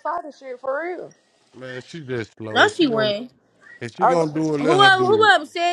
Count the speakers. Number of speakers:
3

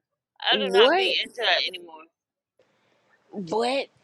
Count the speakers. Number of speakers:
2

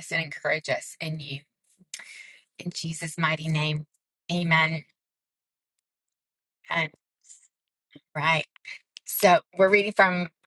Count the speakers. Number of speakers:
1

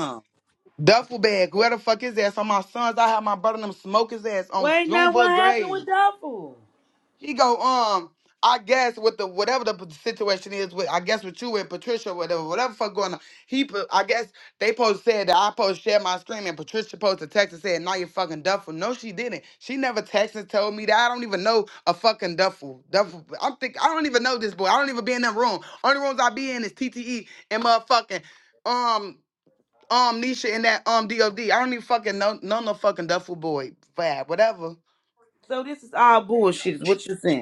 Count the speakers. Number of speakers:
2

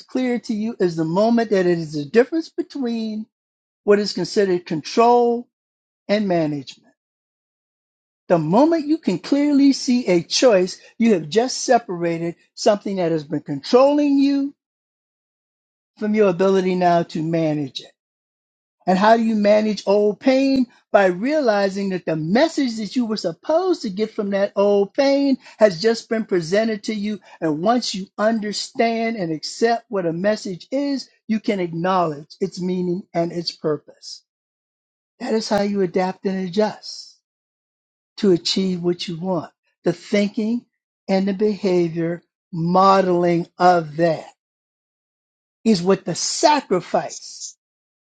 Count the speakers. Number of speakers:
1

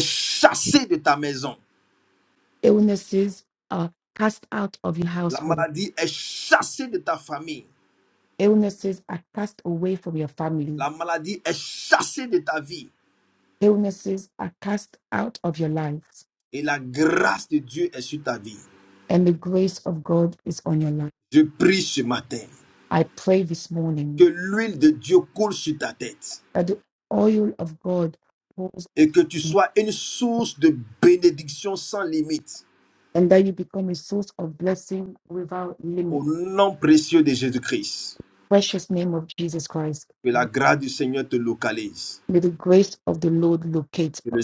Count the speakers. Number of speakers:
2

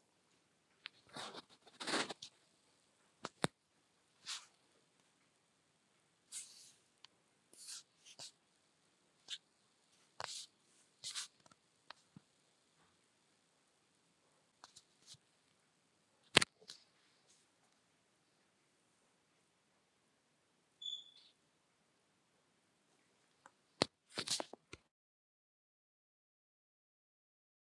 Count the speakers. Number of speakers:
0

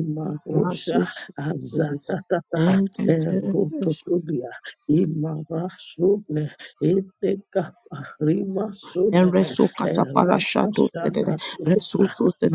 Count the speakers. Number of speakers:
2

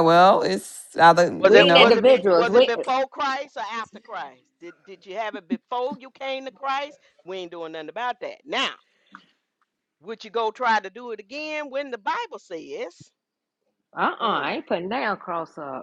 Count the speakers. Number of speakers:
3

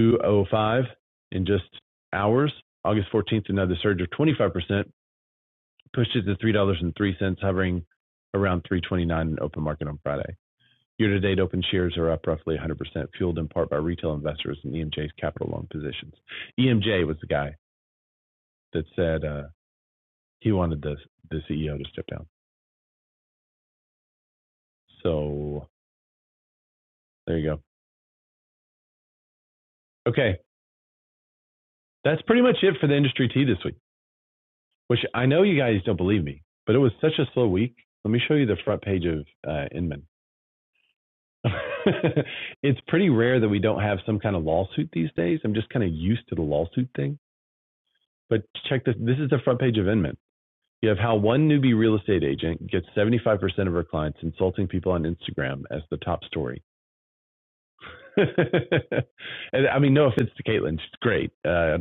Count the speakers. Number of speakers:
1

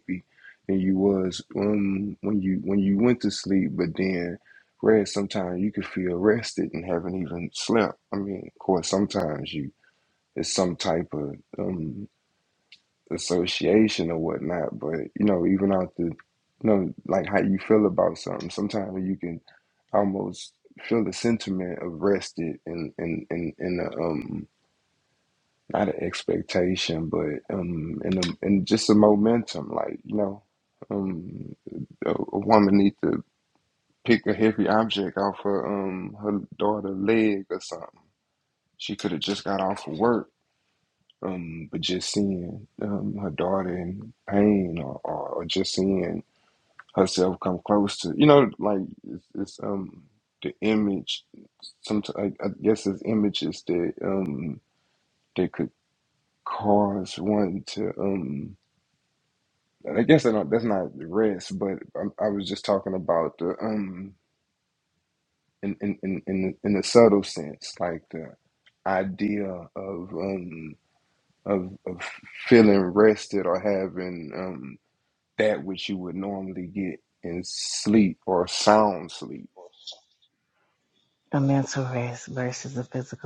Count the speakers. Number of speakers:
2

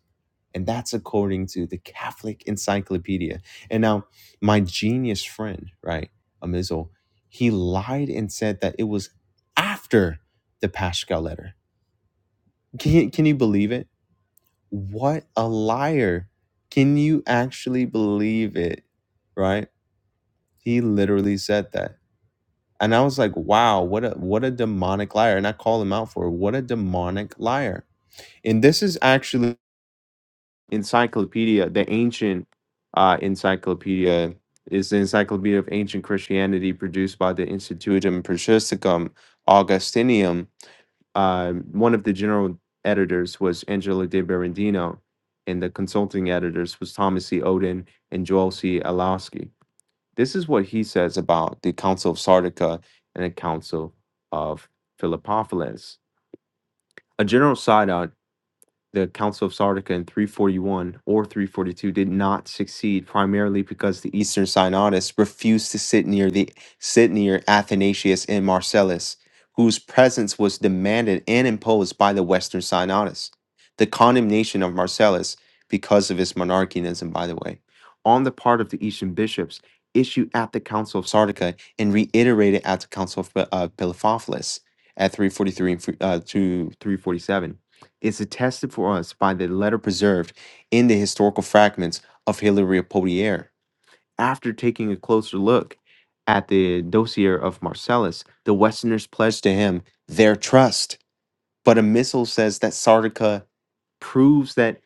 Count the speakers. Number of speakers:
1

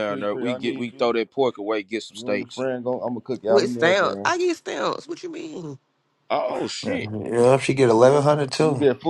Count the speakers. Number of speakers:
4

